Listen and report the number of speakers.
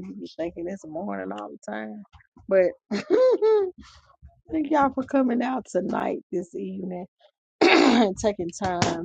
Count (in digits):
1